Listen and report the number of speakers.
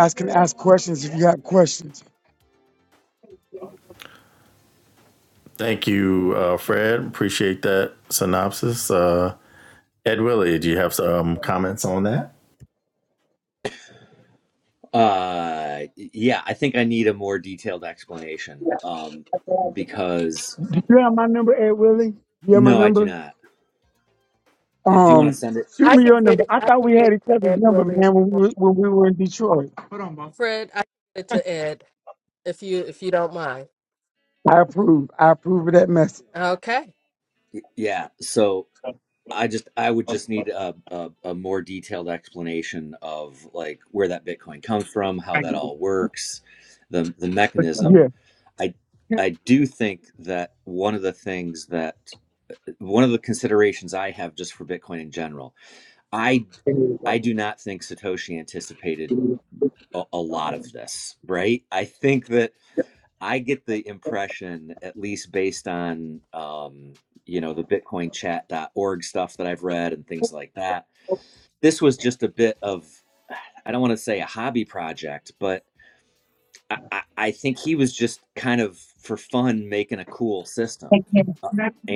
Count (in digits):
4